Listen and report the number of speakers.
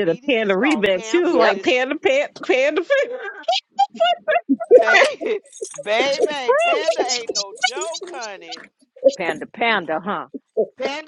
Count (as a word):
three